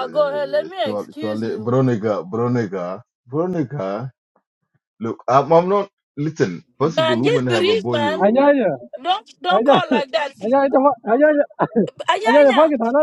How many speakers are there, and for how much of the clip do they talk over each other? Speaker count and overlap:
3, about 21%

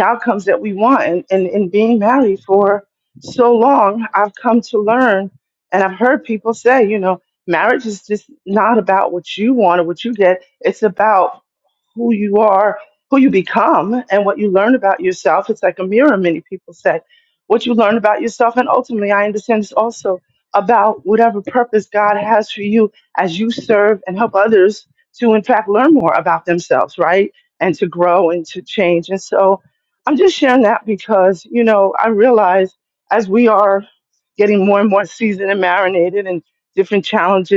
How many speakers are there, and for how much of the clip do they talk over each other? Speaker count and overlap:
1, no overlap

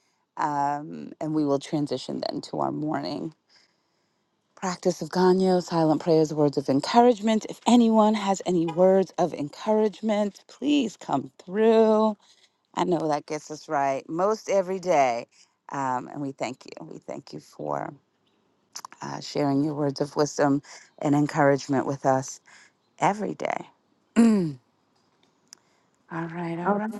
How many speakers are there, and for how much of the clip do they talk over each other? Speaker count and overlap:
1, no overlap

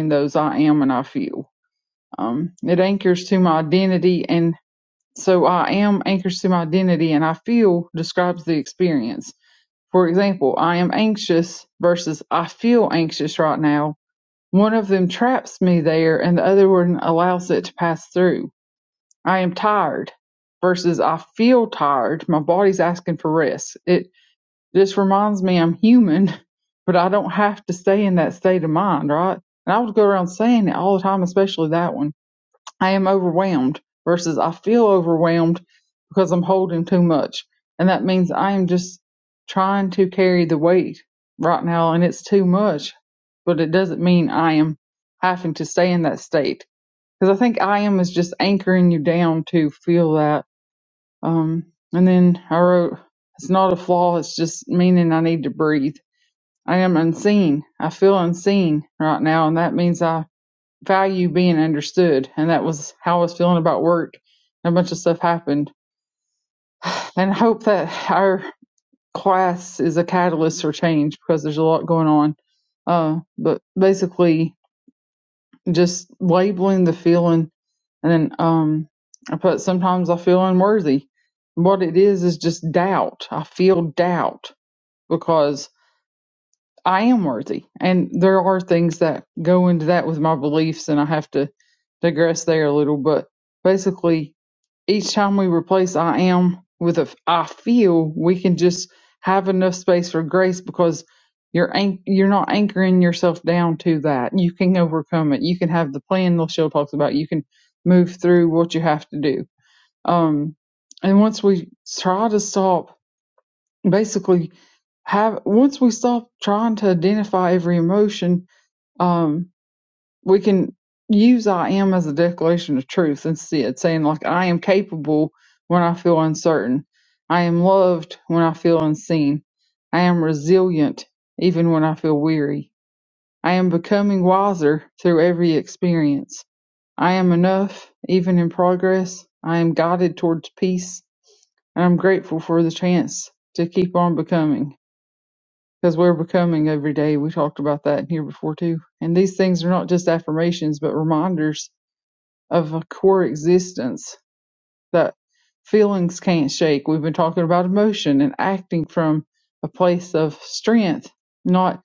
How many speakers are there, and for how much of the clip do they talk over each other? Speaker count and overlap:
1, no overlap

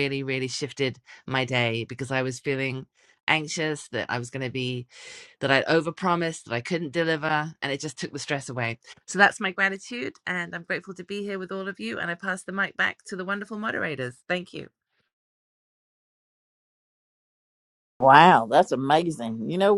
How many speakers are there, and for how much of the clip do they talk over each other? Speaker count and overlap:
2, no overlap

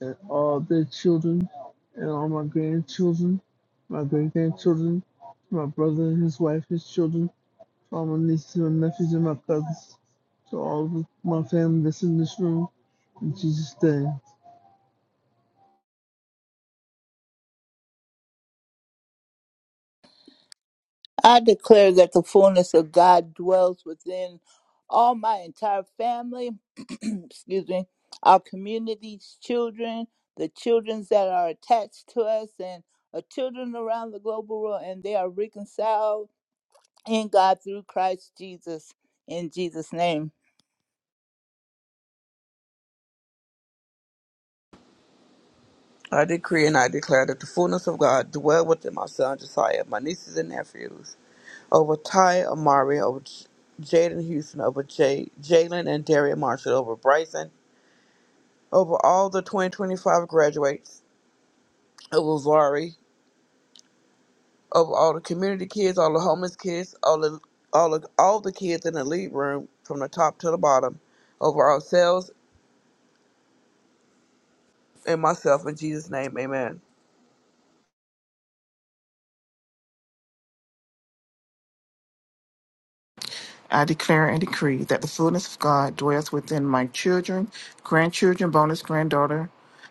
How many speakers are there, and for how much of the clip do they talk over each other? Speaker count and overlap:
4, no overlap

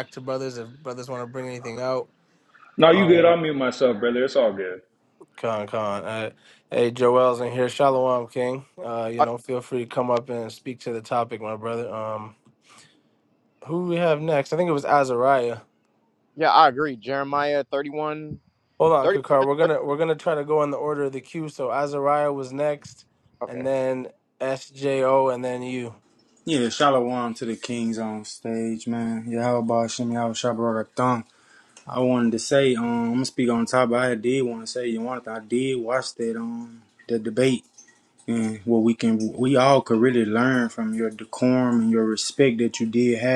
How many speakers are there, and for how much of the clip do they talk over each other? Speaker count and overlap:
4, about 2%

